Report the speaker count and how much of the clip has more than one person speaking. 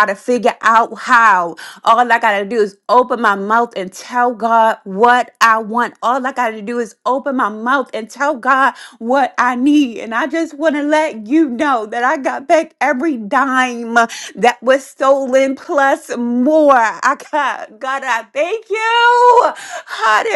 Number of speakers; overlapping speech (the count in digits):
1, no overlap